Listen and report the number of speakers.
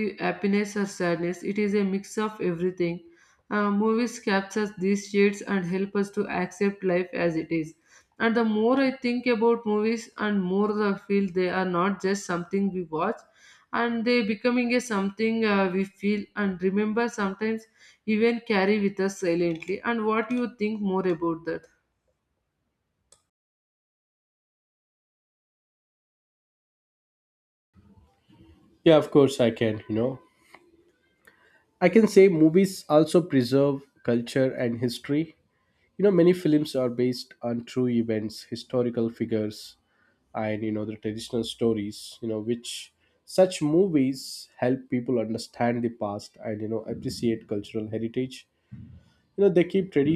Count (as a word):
two